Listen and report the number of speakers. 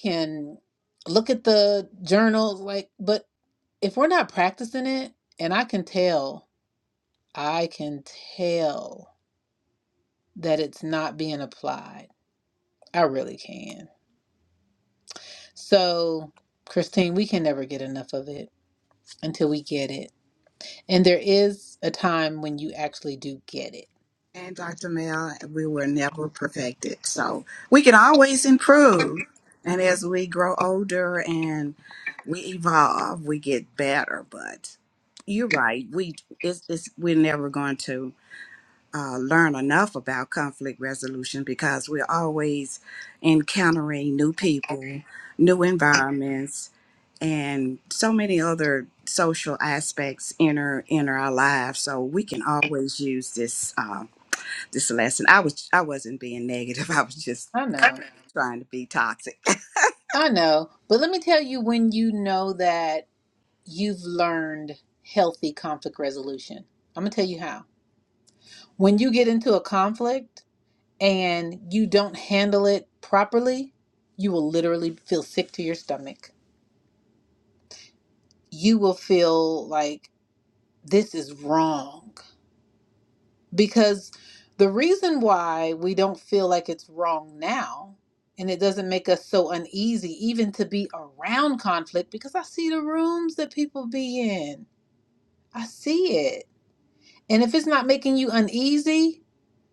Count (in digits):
2